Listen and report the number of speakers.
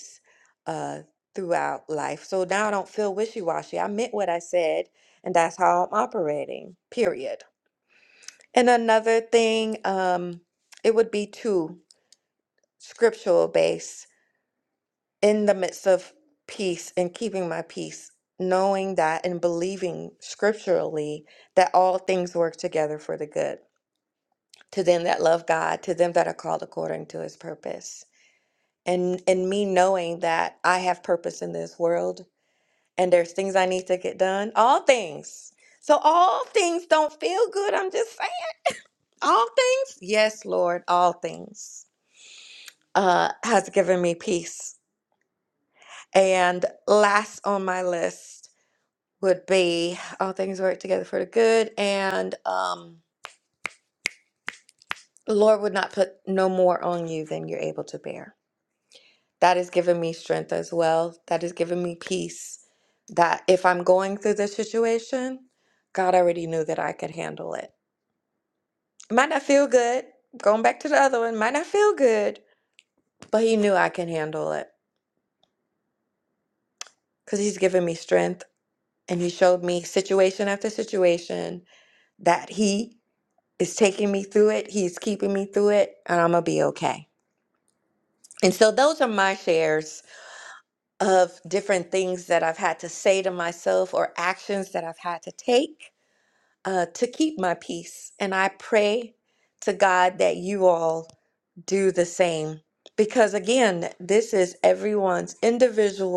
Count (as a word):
one